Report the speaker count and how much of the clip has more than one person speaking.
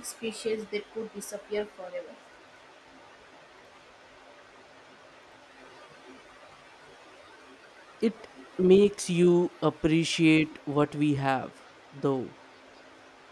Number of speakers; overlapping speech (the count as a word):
two, no overlap